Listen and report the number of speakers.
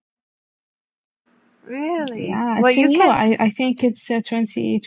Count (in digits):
2